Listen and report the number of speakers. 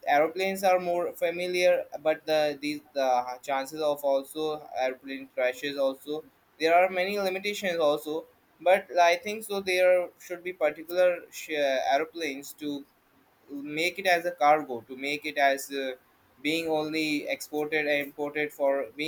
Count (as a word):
one